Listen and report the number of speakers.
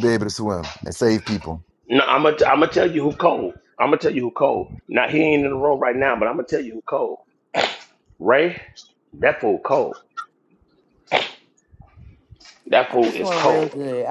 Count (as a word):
three